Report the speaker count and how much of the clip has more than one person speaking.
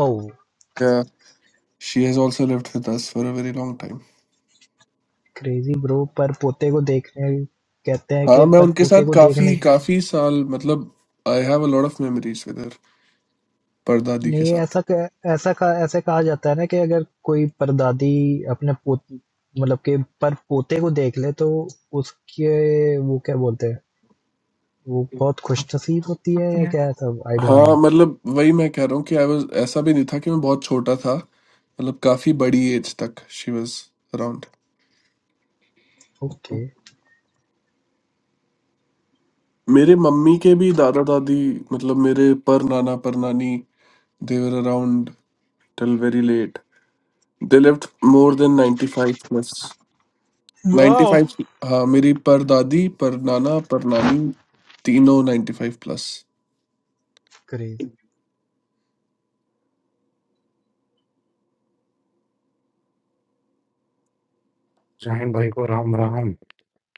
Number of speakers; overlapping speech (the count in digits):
3, about 4%